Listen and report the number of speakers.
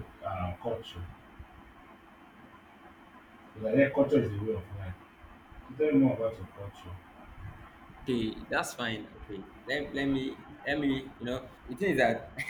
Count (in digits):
2